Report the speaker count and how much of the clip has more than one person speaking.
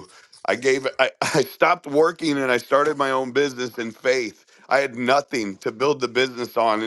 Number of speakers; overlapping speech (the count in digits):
1, no overlap